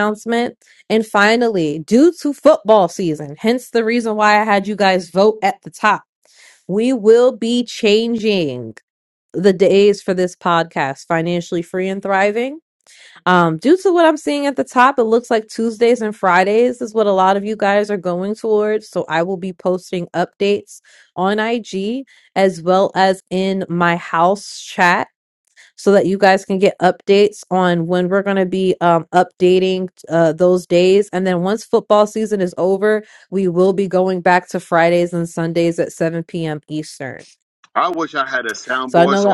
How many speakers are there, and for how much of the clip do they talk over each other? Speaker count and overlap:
2, about 1%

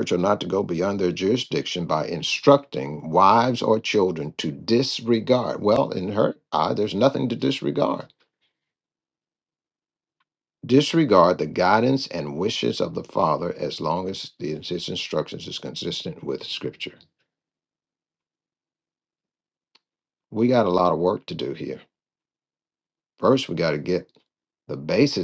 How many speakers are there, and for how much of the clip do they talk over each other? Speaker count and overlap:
1, no overlap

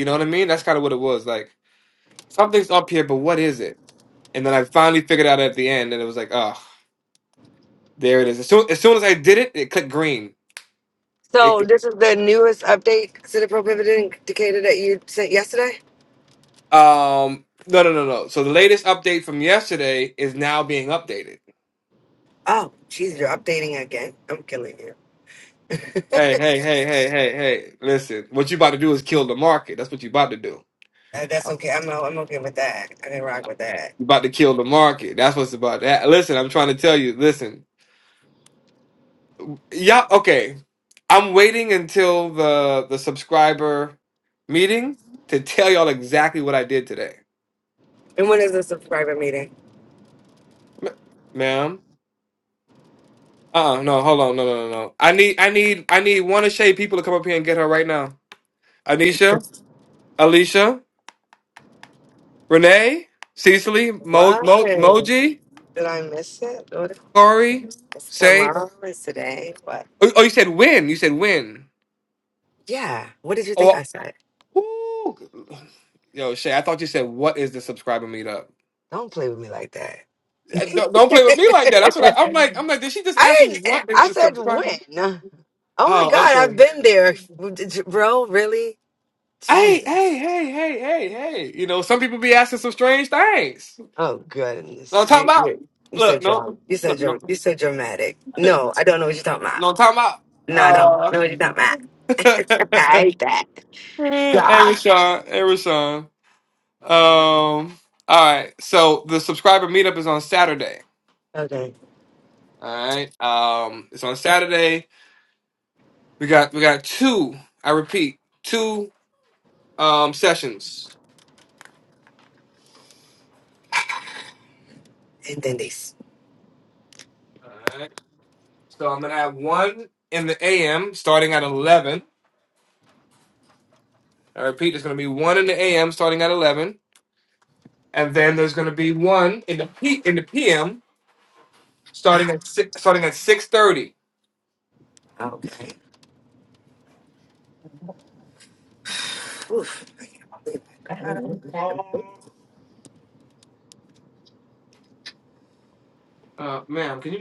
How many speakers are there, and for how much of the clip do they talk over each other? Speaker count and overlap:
2, about 5%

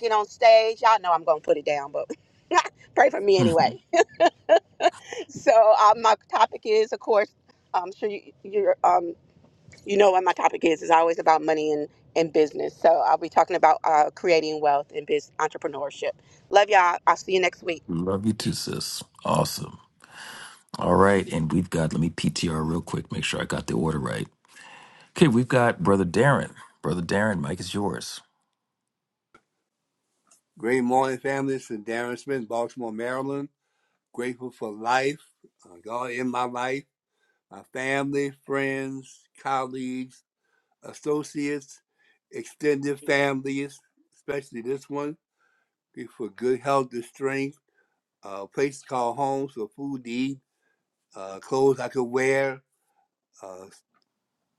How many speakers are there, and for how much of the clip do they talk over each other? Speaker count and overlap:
3, about 1%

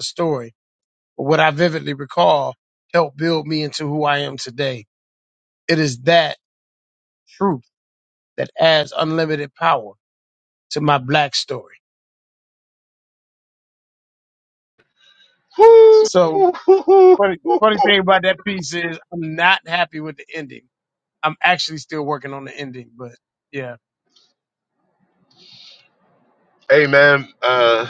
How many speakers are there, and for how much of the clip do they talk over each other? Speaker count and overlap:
2, no overlap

